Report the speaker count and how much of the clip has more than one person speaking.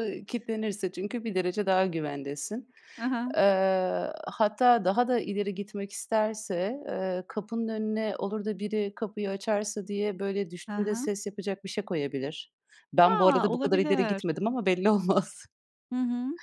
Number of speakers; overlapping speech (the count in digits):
2, about 10%